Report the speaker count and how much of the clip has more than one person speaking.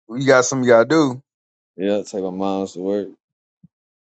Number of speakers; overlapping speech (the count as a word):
two, no overlap